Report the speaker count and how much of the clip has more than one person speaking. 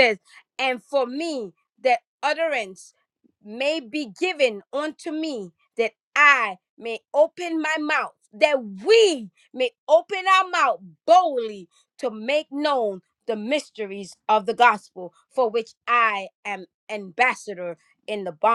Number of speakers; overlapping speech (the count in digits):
1, no overlap